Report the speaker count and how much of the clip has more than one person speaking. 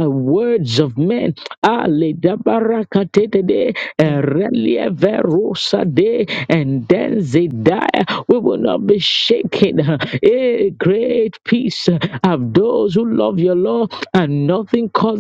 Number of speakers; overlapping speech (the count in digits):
1, no overlap